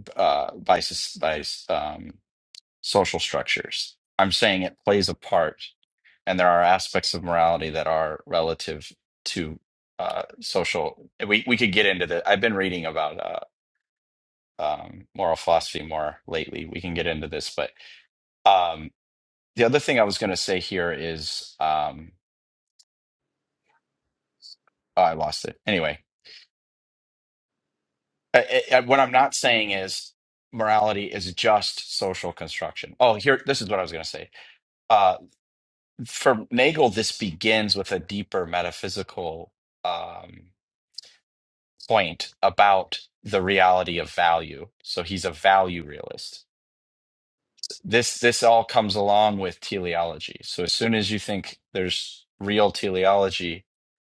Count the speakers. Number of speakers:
1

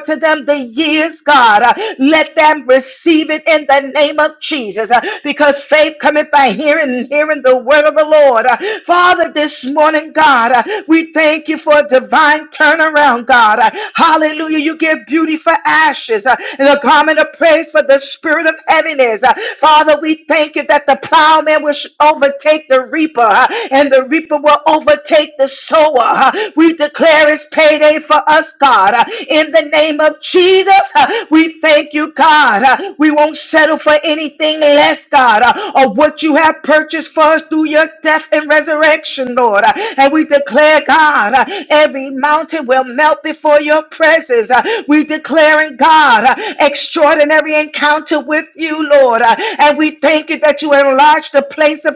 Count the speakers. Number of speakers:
1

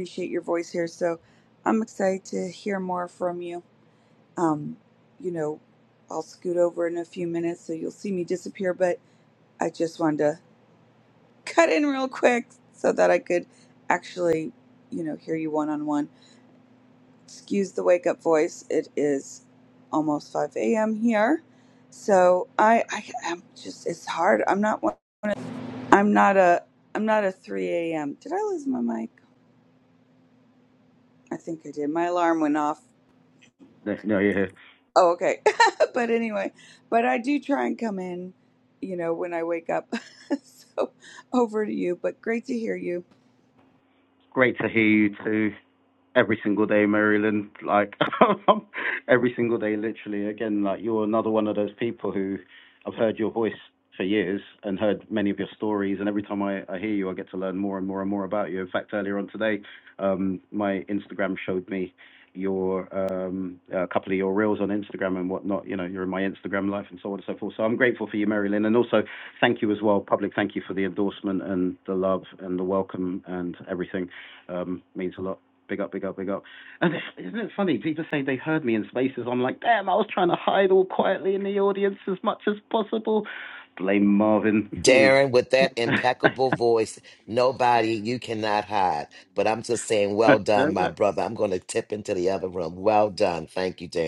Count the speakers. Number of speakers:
3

